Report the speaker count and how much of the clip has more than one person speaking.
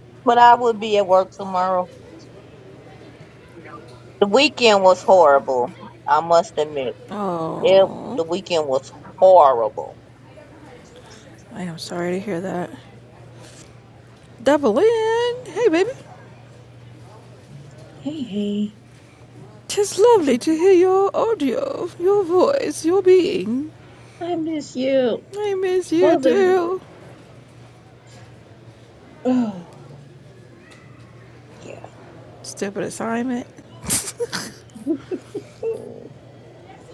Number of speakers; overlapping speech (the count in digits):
3, about 3%